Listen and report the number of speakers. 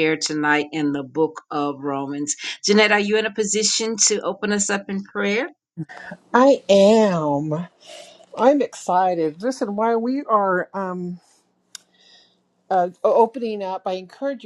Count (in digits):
2